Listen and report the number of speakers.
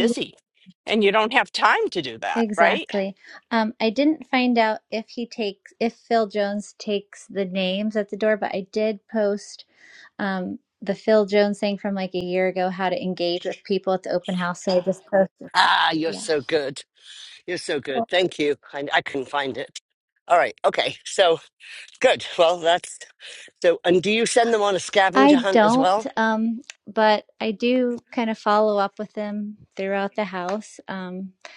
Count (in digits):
3